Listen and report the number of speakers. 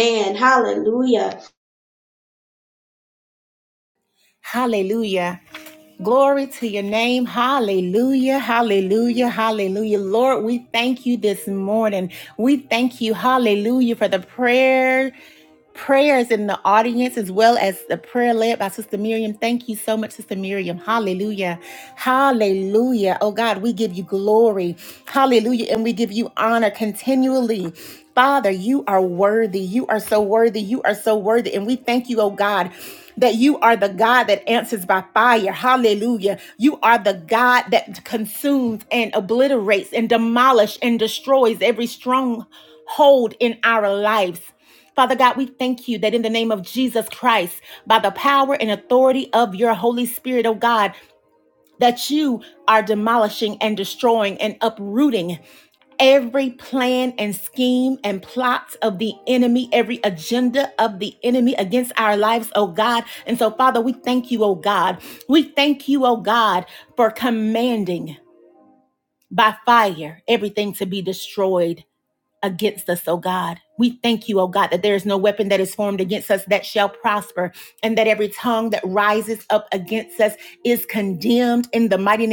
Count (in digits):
2